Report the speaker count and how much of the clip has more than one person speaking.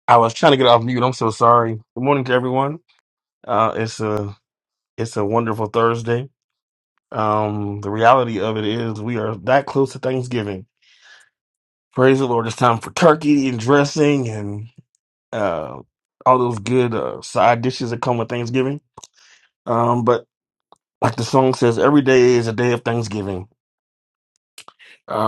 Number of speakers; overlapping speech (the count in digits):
1, no overlap